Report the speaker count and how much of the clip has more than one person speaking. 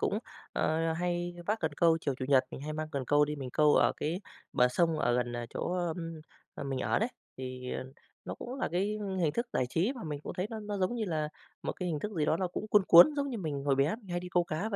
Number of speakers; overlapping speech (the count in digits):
1, no overlap